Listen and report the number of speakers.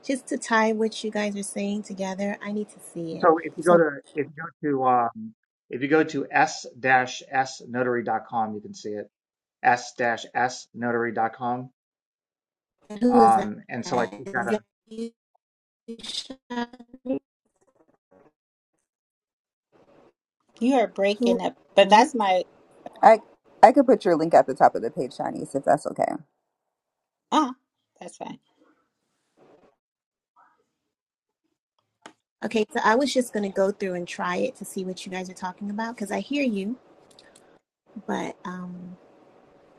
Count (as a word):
four